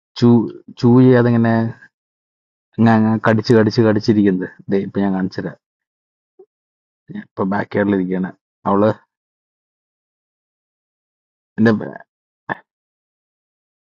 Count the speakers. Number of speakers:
1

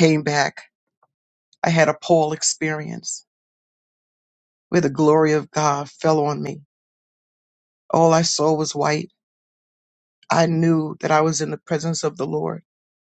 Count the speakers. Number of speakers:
1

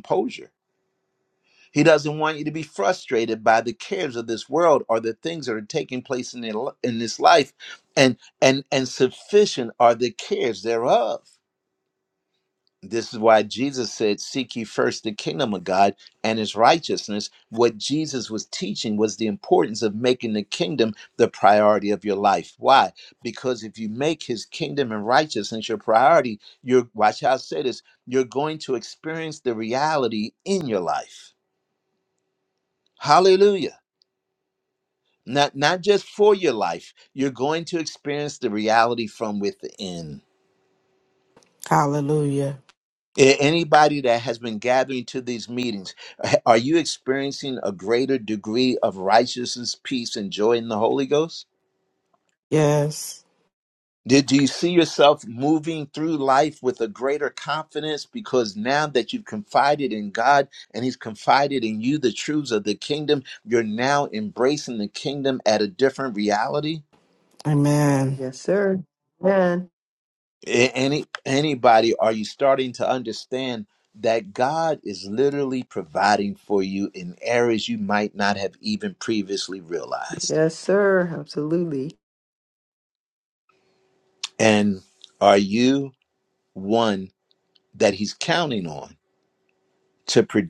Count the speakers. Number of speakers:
3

